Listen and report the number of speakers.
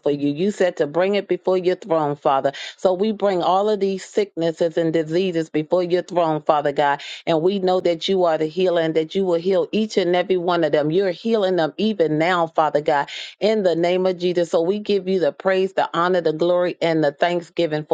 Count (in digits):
1